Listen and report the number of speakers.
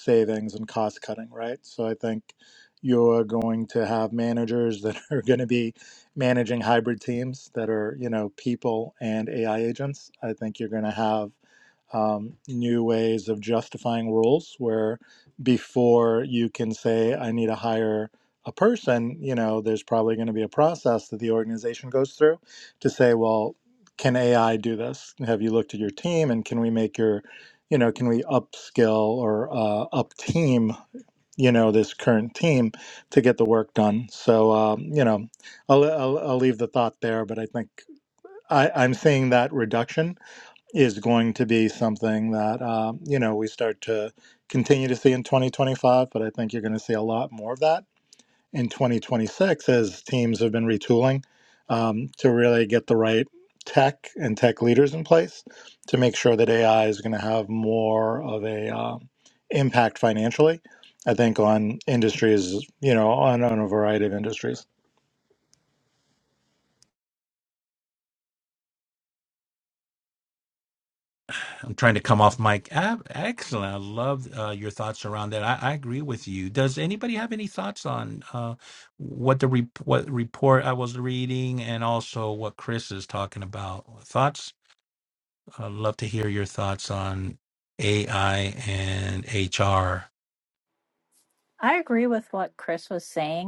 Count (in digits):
3